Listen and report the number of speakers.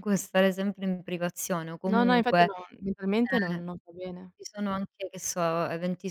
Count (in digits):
2